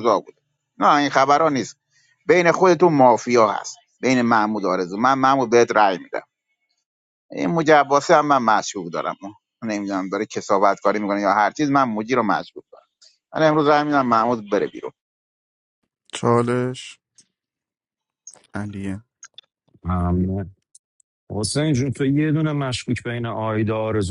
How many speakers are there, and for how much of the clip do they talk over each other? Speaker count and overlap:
3, no overlap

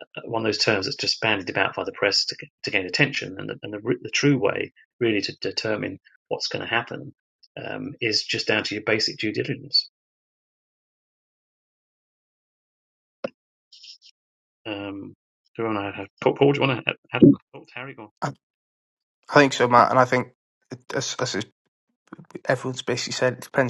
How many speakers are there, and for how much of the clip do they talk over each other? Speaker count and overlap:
2, no overlap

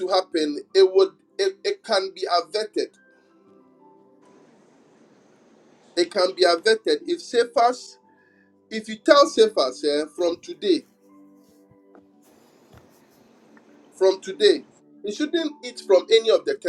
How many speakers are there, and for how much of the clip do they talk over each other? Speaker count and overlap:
1, no overlap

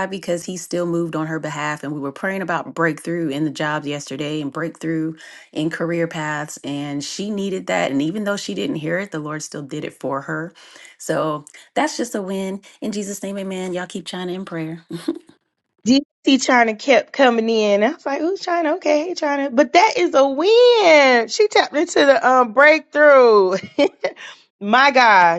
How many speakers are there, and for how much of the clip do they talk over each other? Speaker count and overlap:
2, no overlap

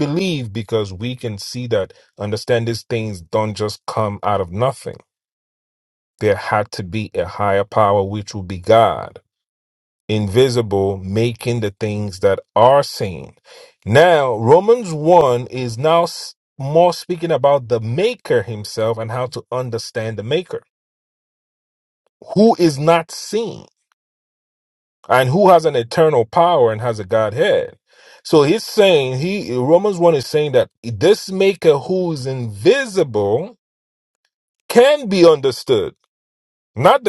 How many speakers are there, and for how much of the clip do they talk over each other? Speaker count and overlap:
1, no overlap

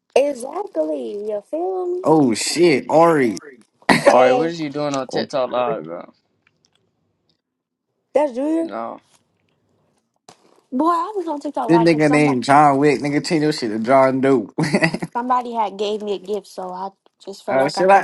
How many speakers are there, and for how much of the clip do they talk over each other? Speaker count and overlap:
3, about 11%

